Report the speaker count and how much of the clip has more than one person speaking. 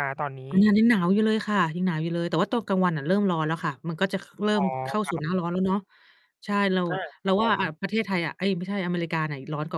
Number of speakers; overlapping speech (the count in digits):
2, about 7%